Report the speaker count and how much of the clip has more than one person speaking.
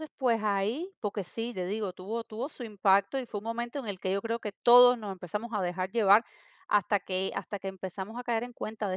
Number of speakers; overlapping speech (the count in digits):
1, no overlap